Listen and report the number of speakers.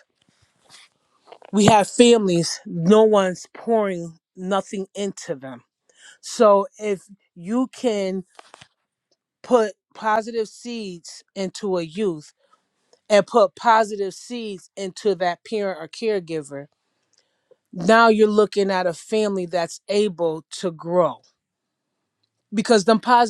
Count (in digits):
1